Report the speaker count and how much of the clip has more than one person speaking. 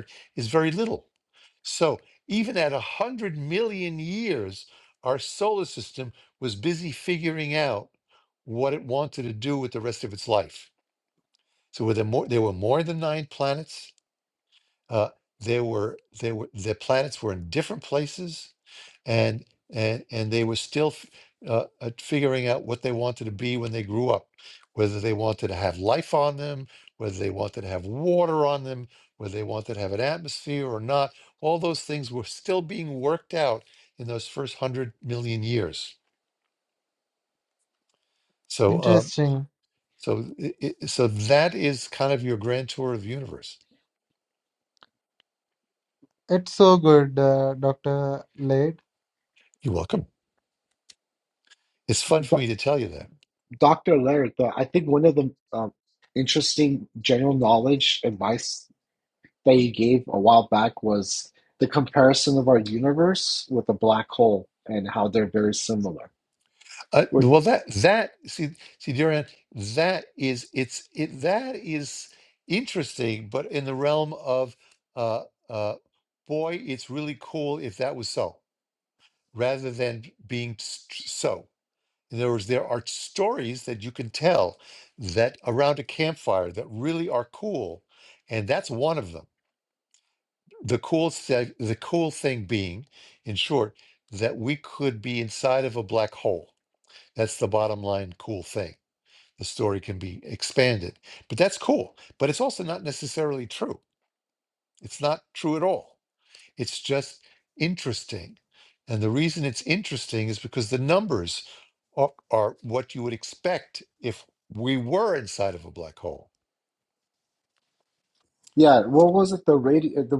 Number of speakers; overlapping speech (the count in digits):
3, about 1%